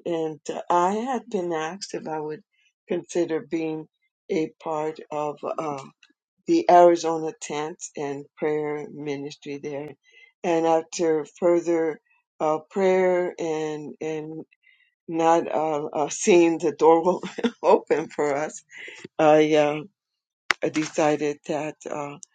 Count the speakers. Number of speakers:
one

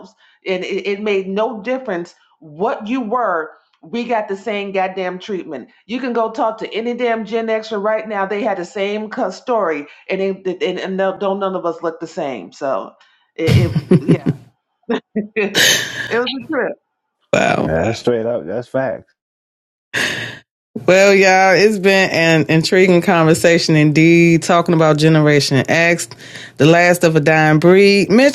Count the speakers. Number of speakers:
three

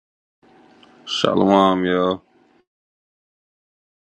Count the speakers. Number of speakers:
one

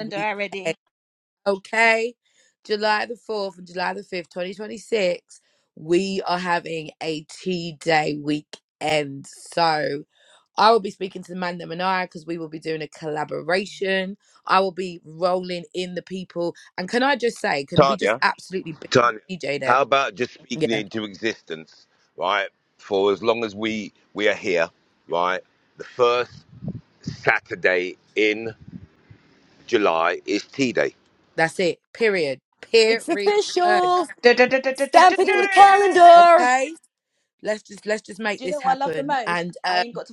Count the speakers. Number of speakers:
four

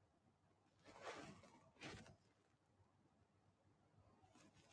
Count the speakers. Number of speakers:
zero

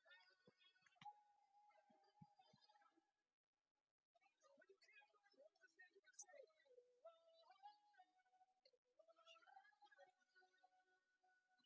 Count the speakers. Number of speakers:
zero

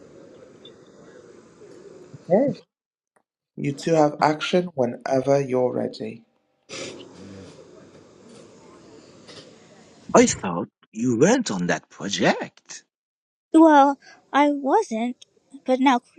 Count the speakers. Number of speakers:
three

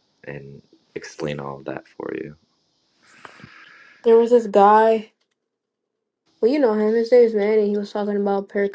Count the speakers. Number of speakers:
two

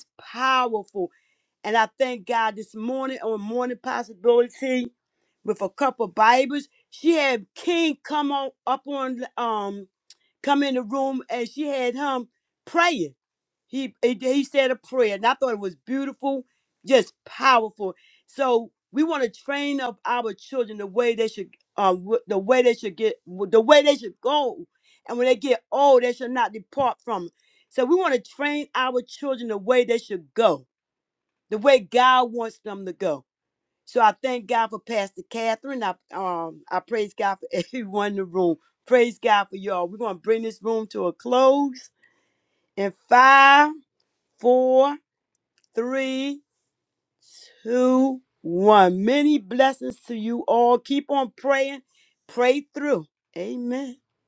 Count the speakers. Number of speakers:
one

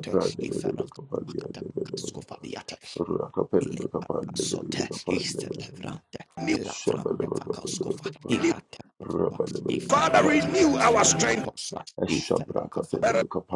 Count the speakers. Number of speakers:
three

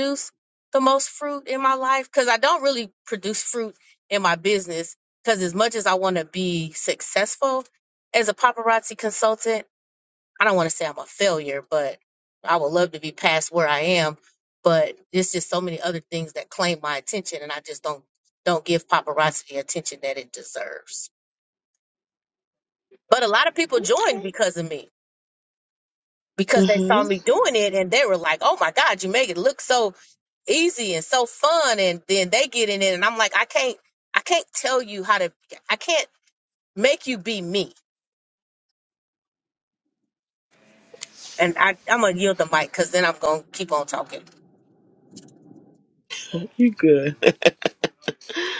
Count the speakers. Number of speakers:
two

